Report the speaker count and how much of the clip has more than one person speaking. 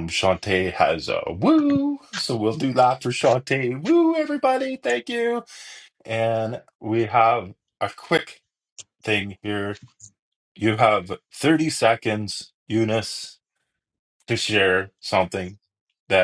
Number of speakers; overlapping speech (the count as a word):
one, no overlap